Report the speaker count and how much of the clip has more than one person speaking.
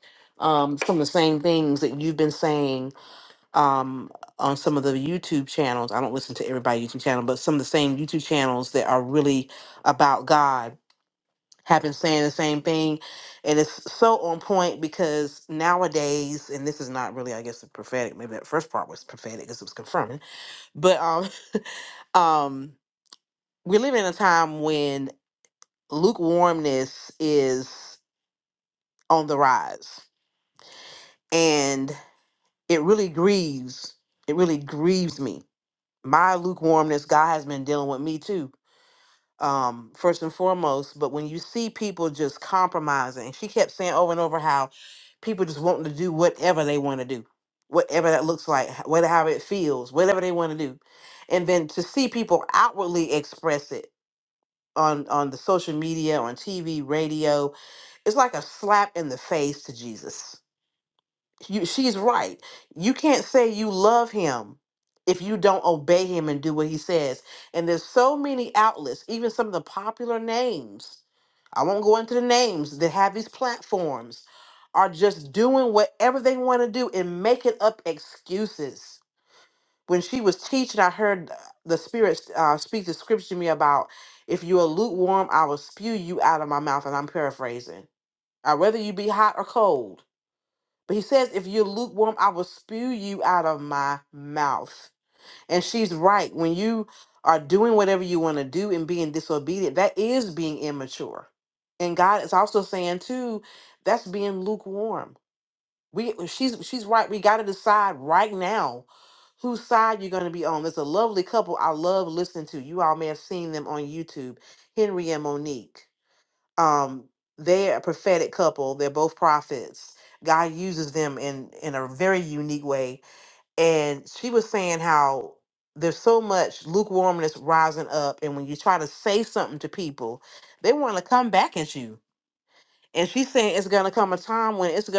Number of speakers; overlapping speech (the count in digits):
1, no overlap